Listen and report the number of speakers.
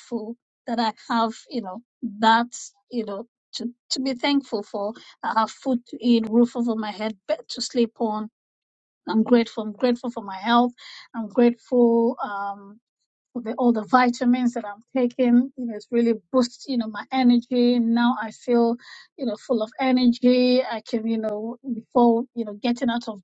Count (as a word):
one